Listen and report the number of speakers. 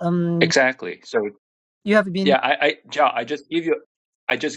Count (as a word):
two